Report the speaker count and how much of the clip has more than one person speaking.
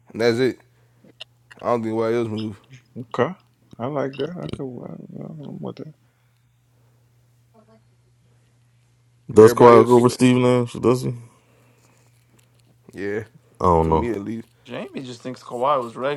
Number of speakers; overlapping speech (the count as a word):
four, about 4%